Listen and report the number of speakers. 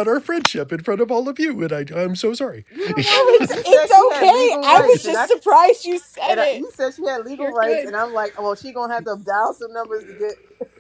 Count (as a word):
three